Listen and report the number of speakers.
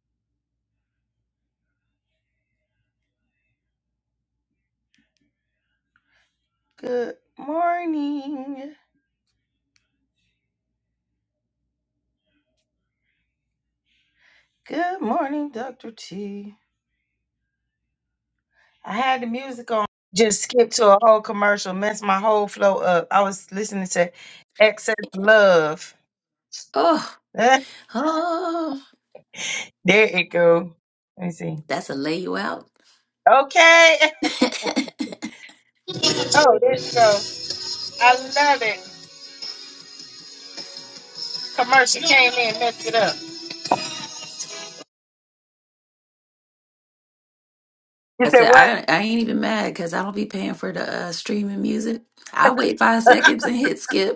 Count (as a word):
two